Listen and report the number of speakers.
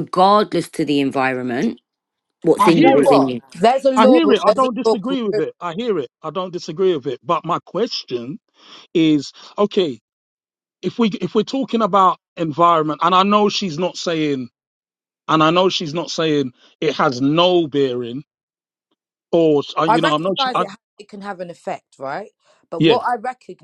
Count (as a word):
three